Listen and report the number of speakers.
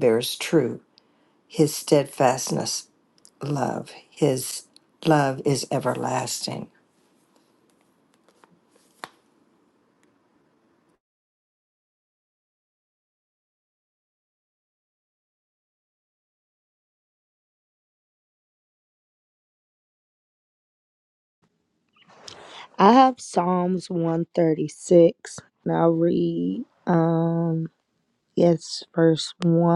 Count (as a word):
two